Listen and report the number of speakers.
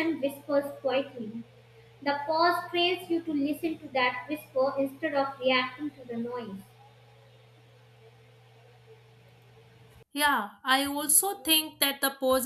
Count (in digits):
2